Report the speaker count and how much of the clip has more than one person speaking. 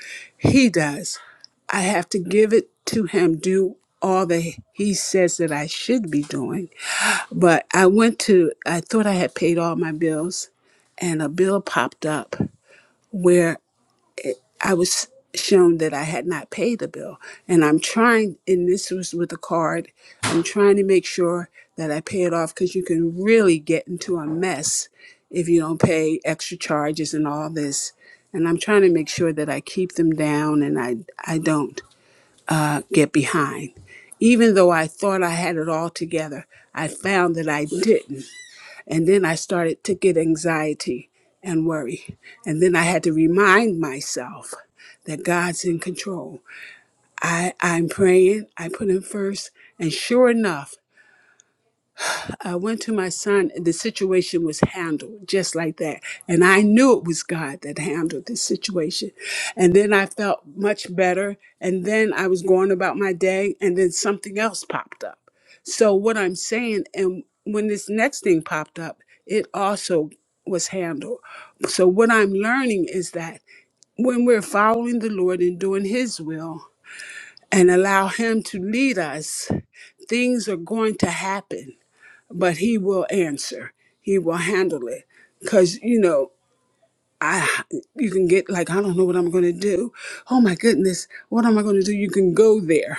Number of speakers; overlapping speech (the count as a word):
one, no overlap